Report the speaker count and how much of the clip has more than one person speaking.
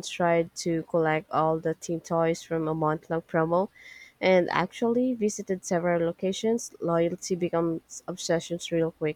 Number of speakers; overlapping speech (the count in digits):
1, no overlap